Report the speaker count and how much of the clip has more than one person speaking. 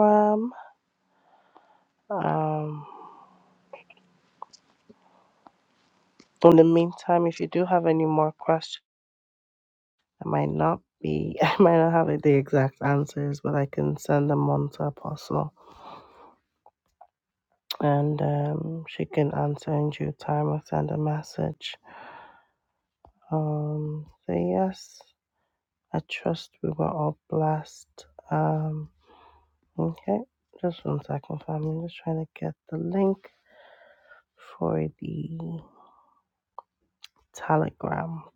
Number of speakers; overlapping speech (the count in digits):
1, no overlap